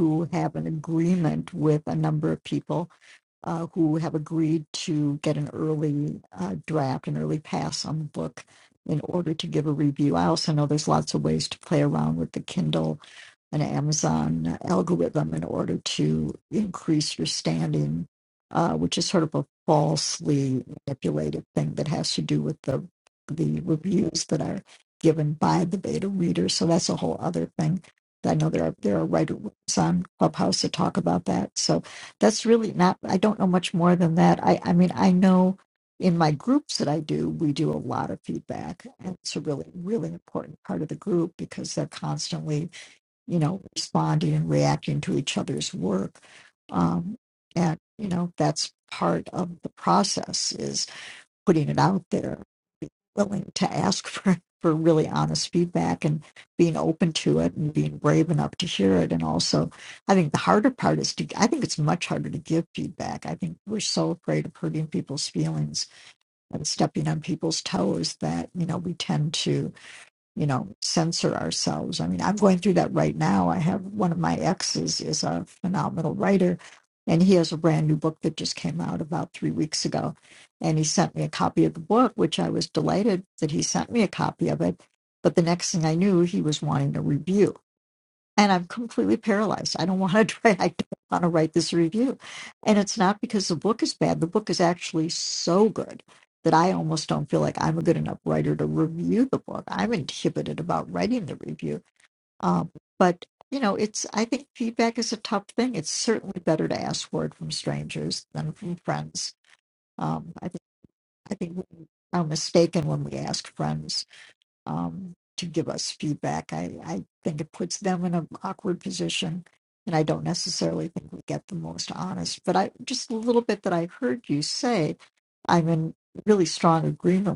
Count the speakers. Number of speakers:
one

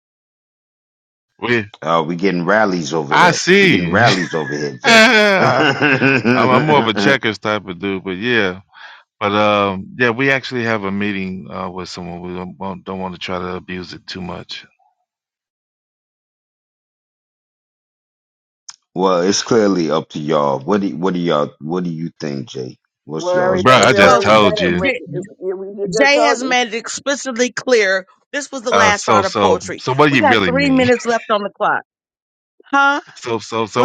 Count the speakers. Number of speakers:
four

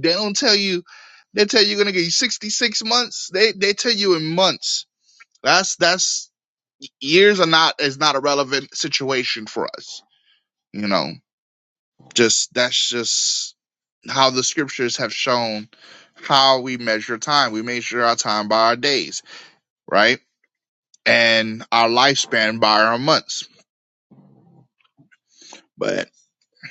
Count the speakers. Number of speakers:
one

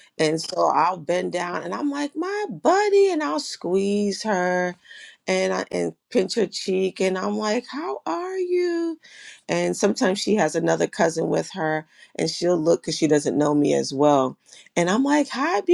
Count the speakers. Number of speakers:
one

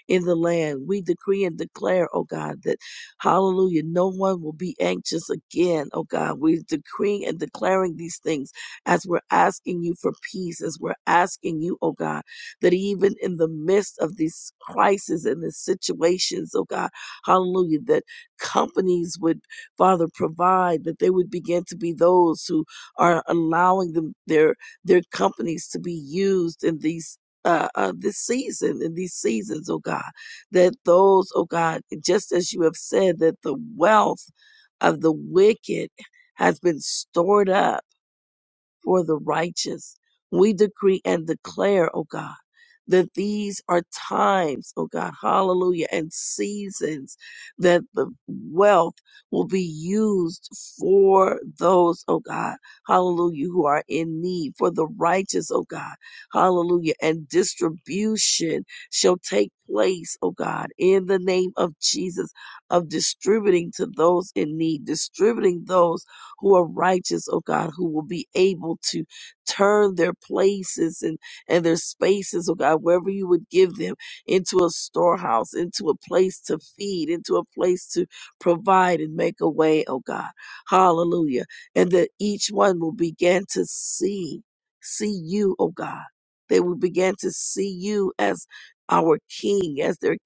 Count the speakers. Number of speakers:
one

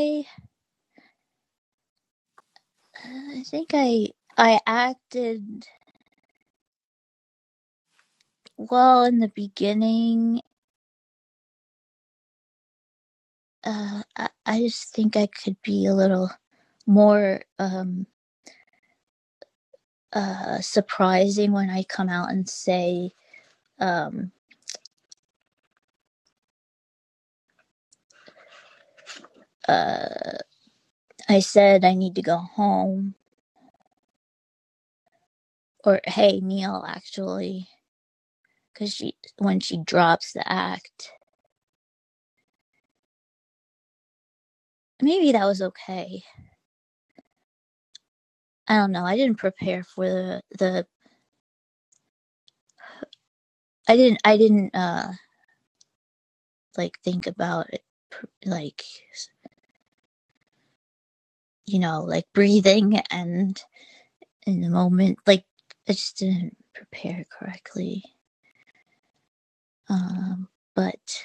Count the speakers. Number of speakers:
one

